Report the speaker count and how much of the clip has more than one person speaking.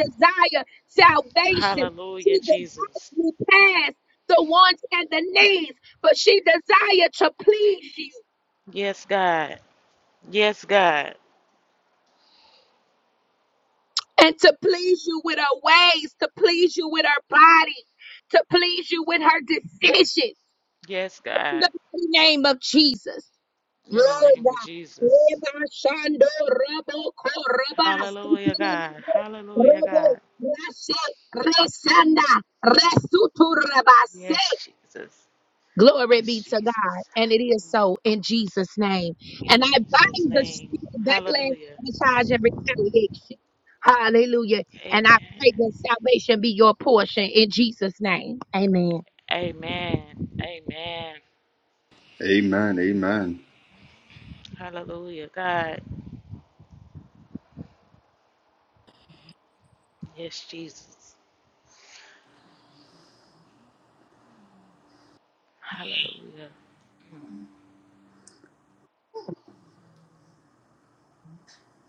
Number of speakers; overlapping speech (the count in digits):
3, about 8%